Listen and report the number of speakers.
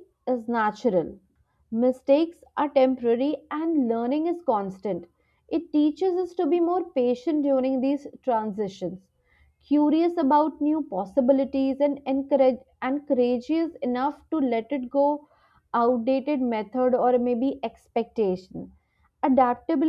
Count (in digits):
1